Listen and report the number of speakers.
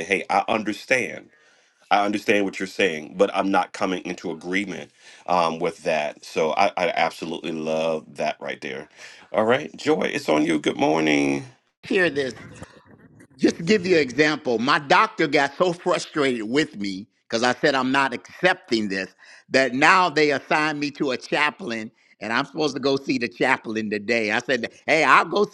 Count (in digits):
2